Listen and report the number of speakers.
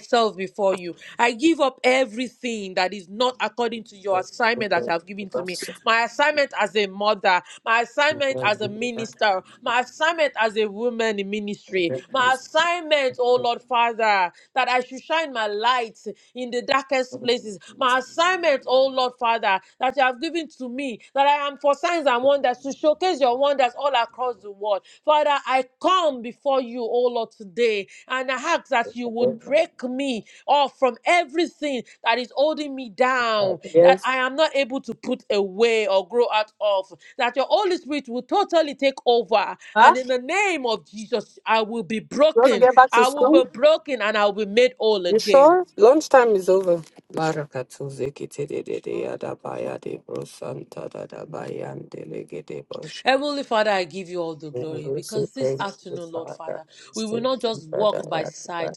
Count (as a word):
two